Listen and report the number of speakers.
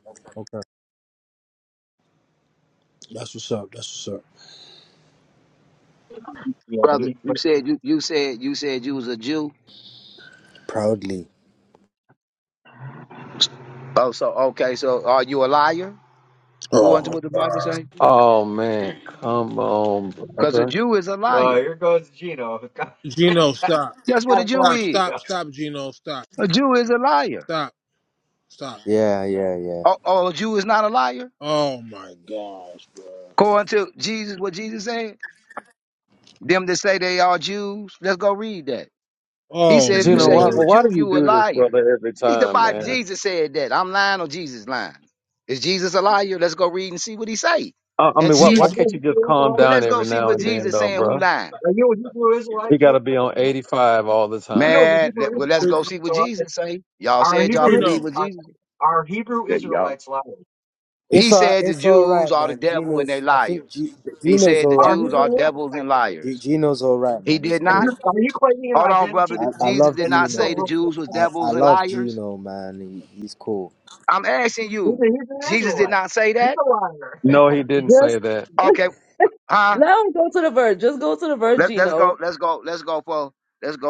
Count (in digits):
6